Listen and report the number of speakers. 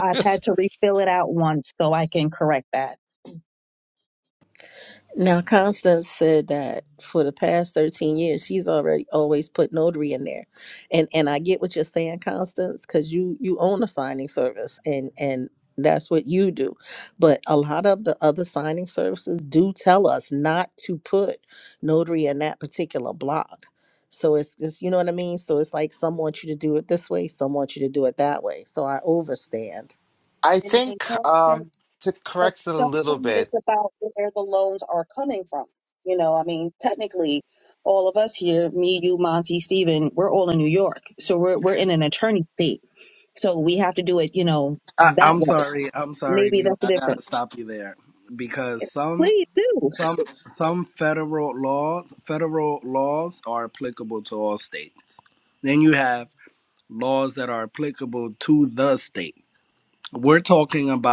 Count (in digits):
4